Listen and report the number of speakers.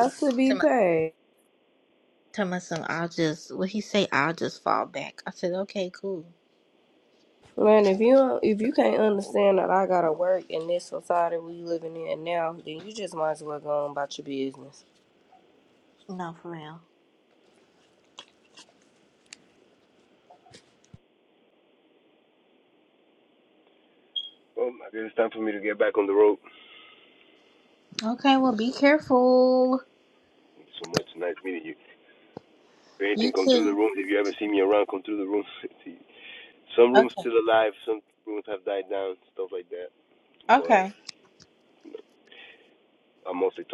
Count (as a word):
three